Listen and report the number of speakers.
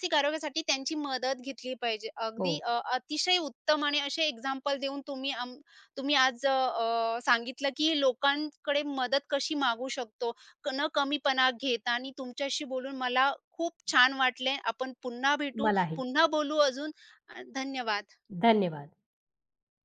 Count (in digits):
2